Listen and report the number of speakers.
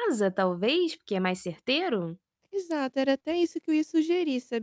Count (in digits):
2